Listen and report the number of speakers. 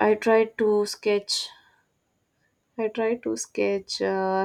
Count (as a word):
one